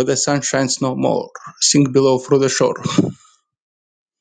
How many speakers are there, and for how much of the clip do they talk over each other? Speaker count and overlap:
1, no overlap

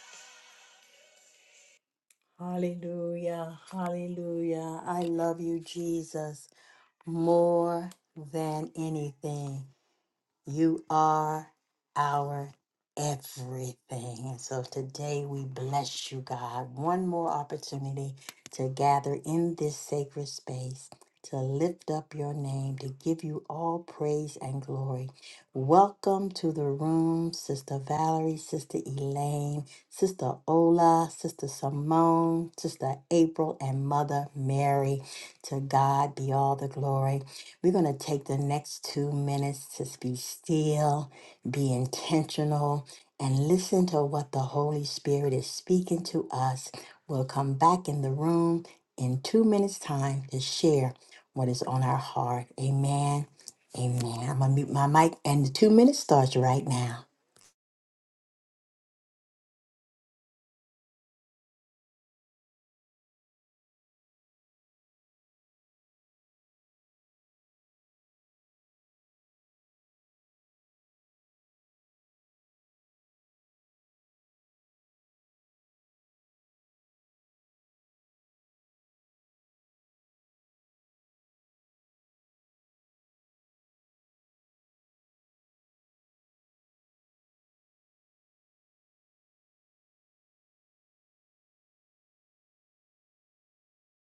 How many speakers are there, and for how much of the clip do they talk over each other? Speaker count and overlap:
1, no overlap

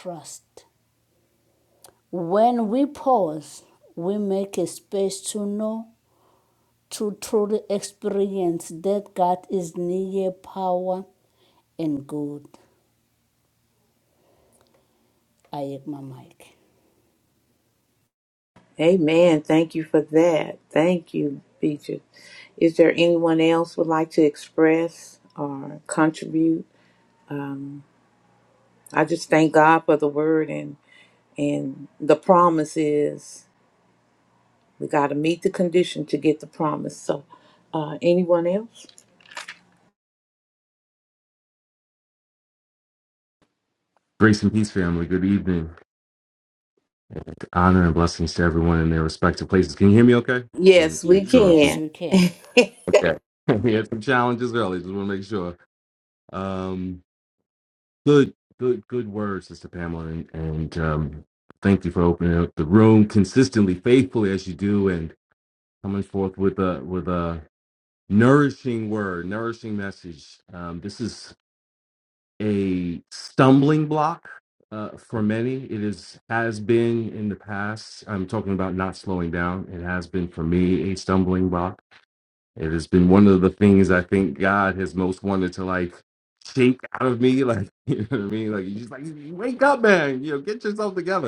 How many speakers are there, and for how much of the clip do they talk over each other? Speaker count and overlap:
3, about 1%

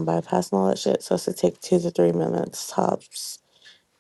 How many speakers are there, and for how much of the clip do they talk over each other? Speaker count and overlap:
1, no overlap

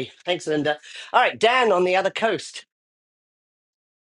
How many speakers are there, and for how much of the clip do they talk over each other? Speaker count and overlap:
1, no overlap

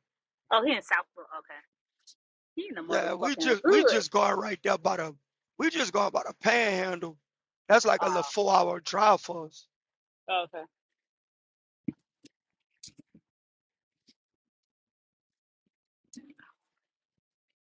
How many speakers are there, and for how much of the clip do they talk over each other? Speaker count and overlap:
2, about 8%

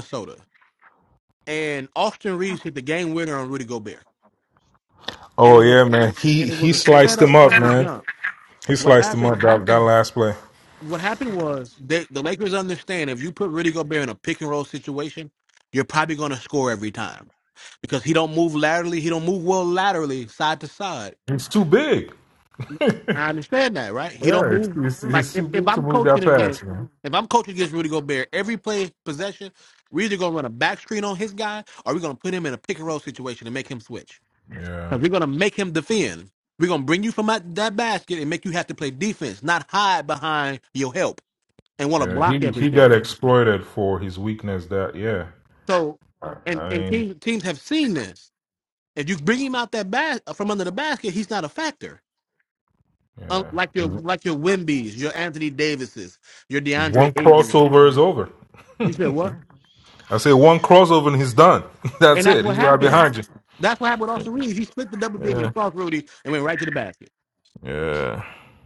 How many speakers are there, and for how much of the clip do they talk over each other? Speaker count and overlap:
2, about 11%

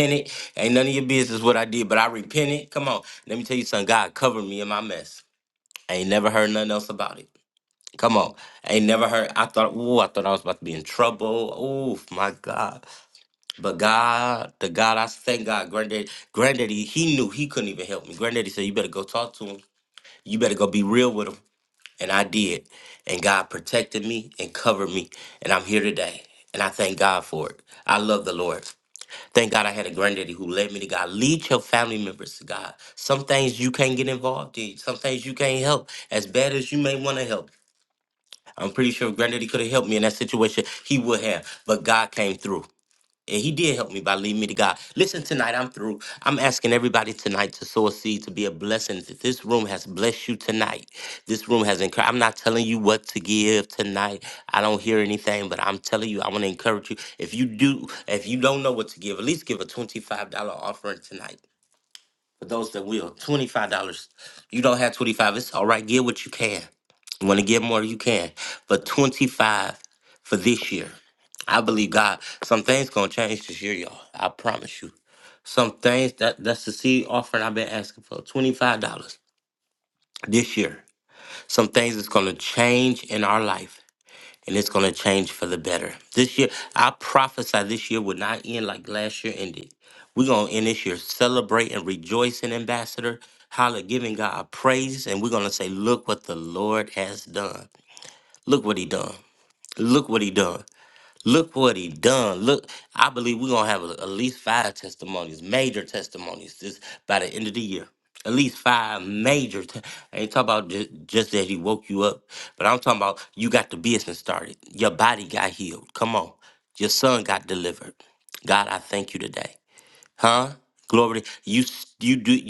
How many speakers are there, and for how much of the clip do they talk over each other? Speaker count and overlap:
1, no overlap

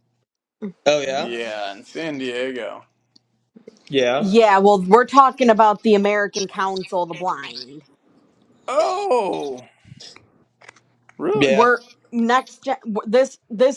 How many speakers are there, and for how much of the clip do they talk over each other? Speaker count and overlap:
3, about 5%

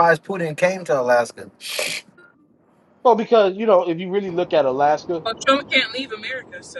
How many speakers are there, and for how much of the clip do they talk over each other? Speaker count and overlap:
3, about 1%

